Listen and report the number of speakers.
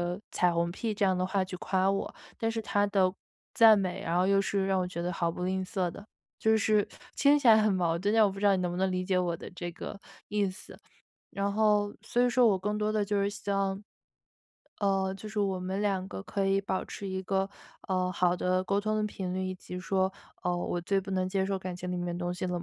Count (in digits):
1